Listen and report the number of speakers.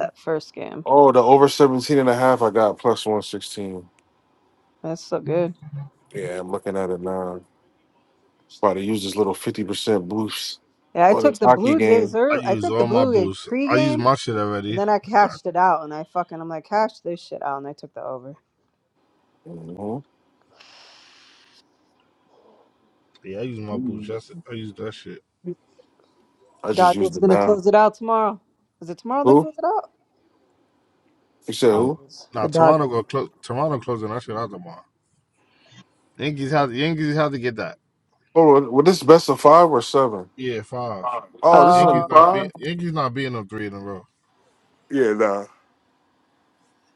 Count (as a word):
three